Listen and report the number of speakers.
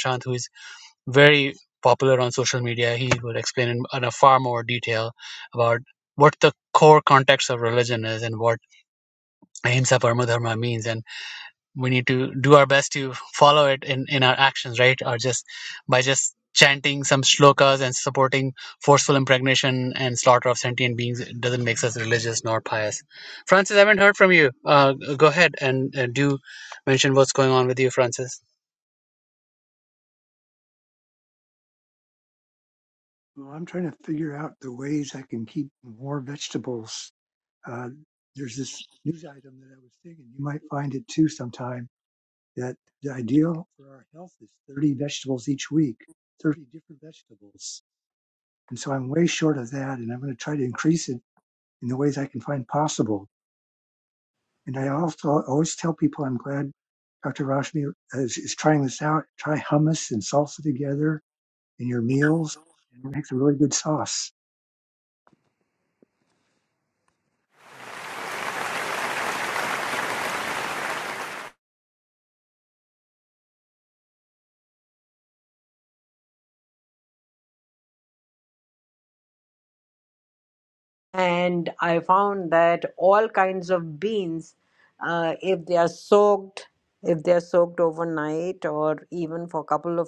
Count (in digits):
3